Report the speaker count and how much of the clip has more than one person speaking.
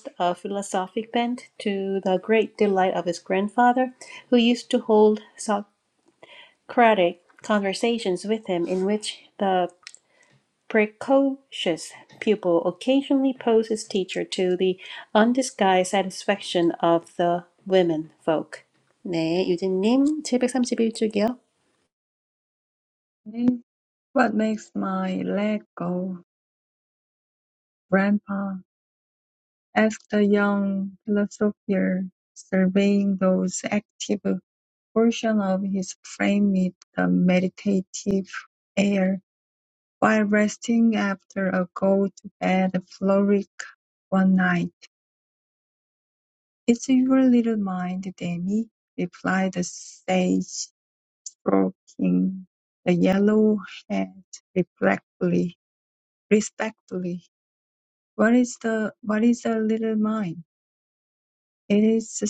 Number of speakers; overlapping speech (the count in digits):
2, no overlap